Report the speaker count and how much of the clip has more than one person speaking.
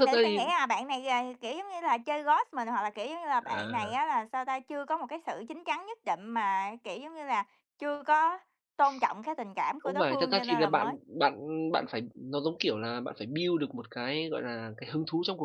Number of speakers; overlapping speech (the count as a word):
two, about 14%